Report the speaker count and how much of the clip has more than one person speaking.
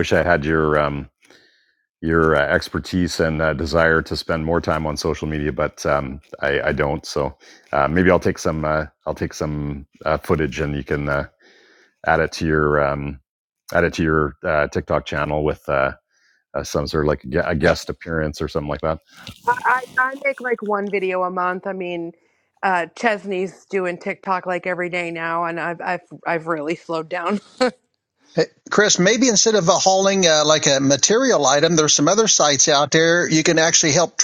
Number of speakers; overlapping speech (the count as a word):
three, no overlap